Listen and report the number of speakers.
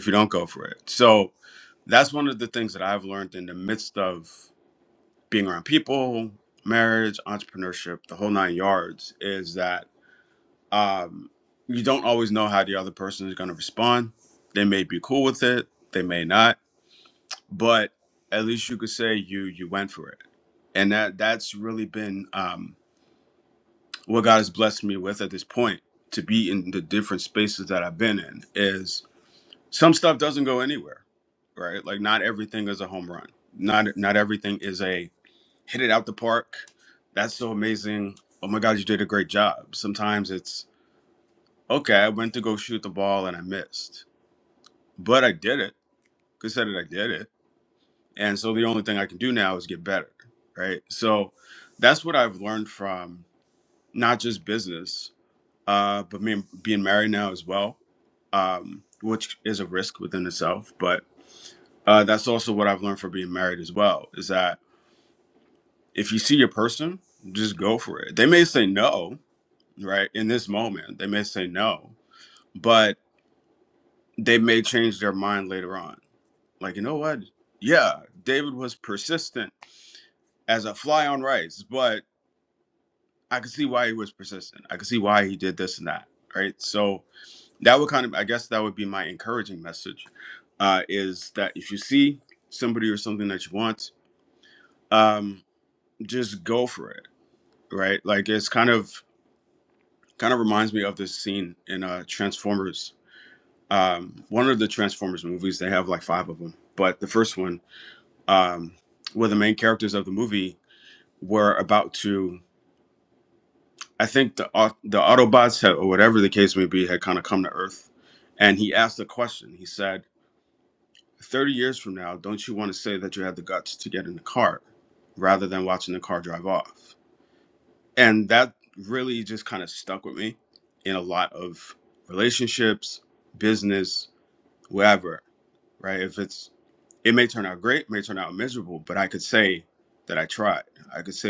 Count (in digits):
1